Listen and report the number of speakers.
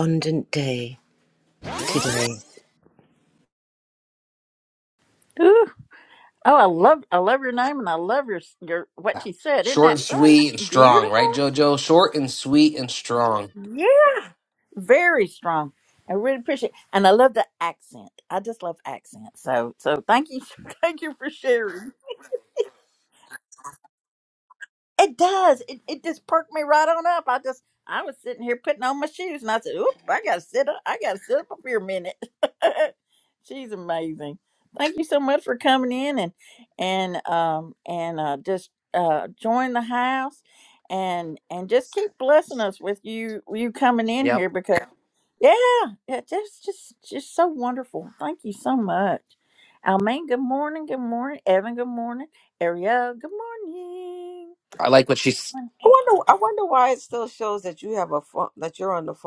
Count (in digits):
4